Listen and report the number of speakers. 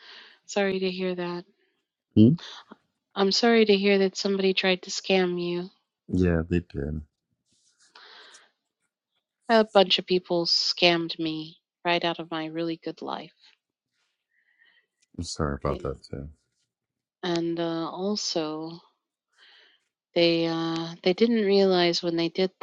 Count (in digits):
2